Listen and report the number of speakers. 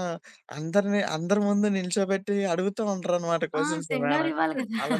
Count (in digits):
2